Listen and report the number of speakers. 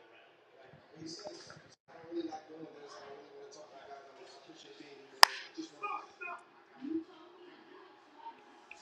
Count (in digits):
0